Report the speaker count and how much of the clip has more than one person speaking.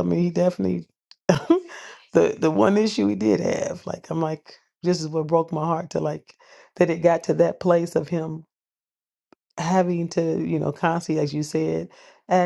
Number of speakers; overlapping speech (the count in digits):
1, no overlap